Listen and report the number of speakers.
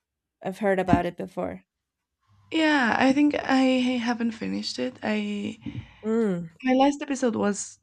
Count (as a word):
two